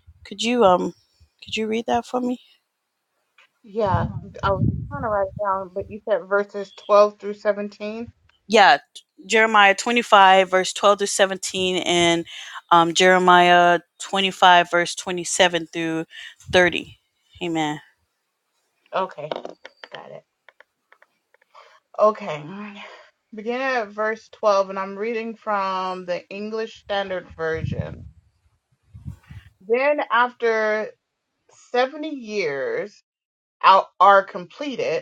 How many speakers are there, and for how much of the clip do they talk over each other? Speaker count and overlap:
two, no overlap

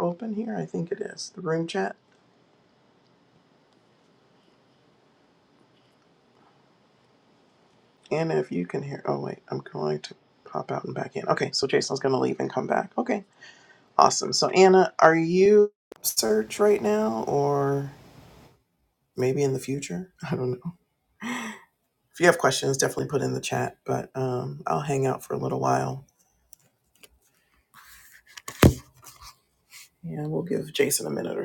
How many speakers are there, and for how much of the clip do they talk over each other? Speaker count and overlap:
one, no overlap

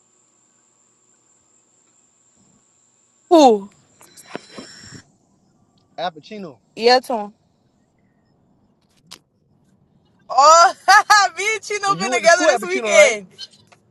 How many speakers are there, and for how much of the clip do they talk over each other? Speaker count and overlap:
two, about 9%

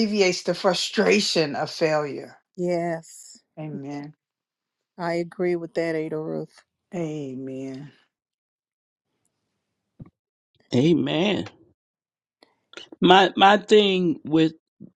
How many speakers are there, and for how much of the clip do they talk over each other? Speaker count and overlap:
three, no overlap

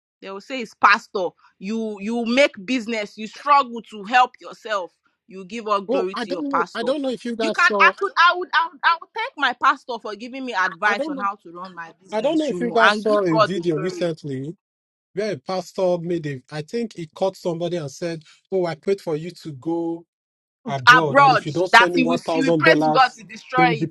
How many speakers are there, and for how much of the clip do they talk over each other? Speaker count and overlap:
two, about 27%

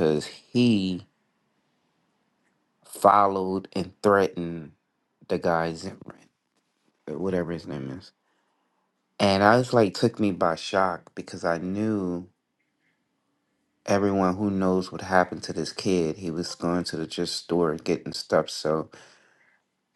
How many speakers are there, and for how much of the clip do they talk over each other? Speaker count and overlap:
one, no overlap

